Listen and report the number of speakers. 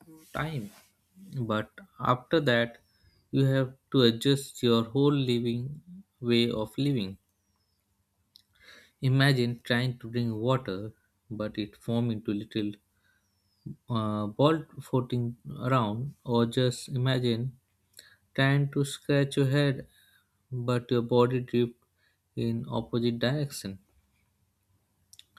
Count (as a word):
one